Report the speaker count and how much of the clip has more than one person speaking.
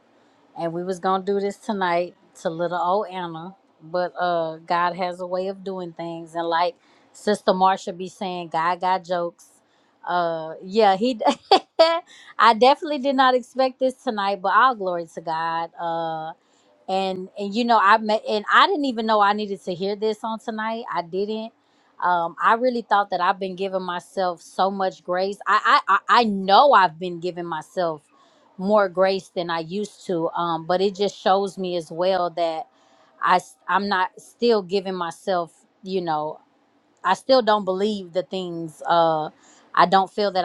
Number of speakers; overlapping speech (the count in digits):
1, no overlap